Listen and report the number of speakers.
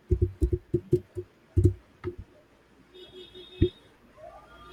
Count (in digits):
0